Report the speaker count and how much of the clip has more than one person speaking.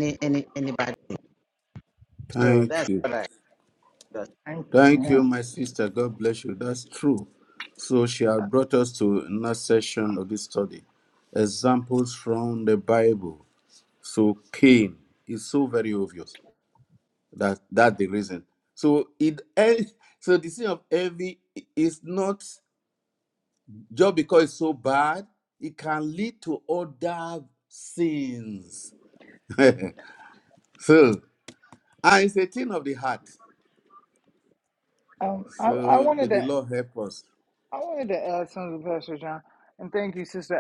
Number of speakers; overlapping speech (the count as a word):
three, about 5%